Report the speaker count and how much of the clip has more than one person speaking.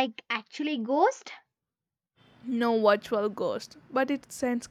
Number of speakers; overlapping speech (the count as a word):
two, no overlap